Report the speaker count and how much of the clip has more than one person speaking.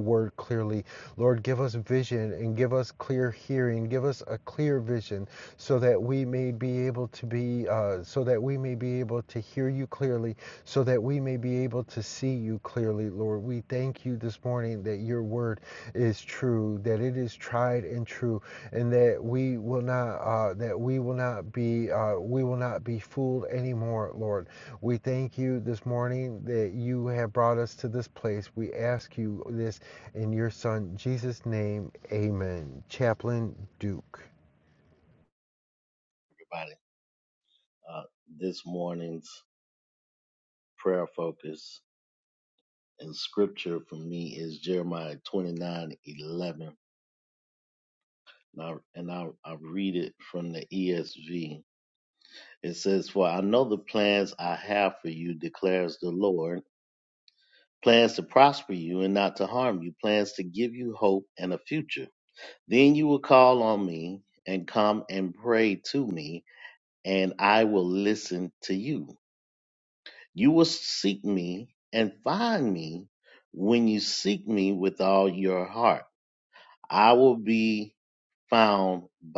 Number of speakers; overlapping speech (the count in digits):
2, no overlap